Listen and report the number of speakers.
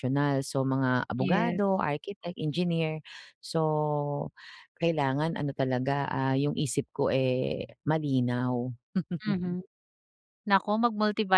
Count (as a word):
two